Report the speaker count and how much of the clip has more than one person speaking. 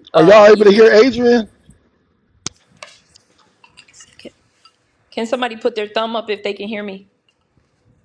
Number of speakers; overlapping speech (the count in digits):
2, about 8%